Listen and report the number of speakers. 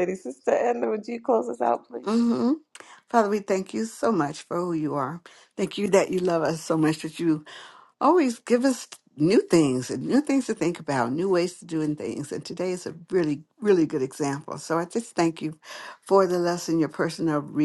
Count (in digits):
2